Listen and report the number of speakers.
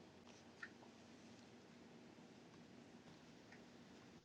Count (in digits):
0